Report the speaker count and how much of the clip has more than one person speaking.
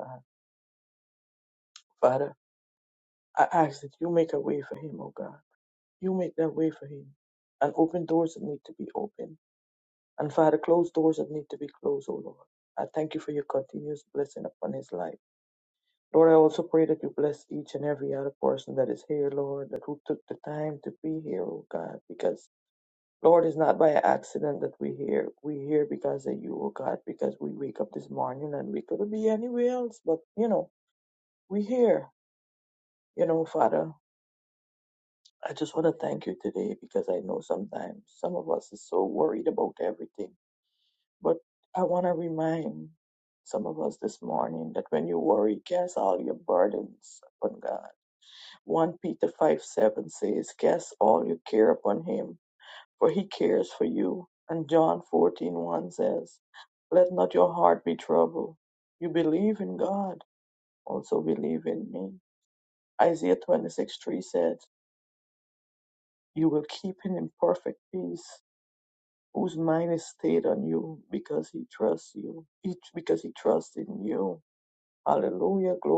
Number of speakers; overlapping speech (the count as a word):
one, no overlap